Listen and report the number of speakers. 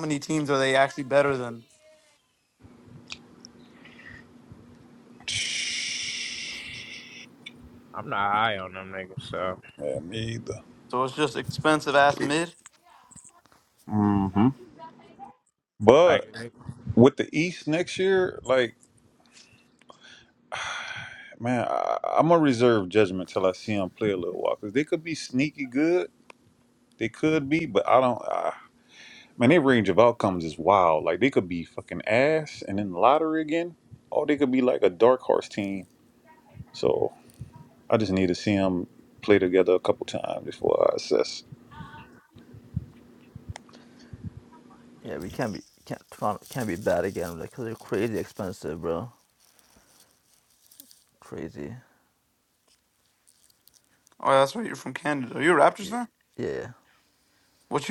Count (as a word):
four